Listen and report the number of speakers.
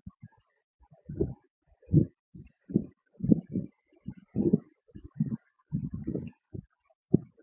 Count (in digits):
0